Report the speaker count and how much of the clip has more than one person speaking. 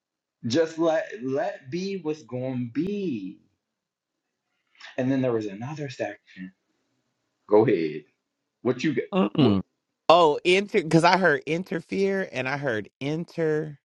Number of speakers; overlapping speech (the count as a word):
two, about 3%